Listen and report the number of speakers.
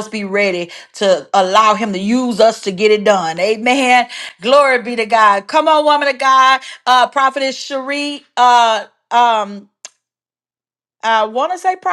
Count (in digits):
1